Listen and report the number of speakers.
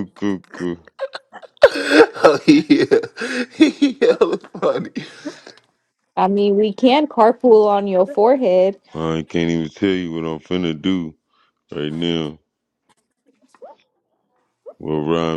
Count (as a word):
three